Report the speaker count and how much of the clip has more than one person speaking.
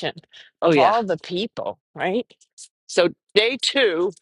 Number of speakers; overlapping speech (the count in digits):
2, about 7%